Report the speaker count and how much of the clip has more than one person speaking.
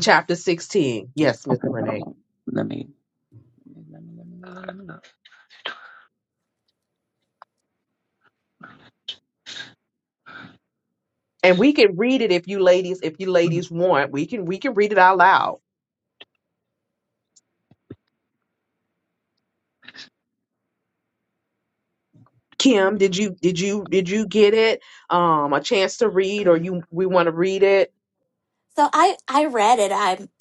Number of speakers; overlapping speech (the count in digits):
3, about 2%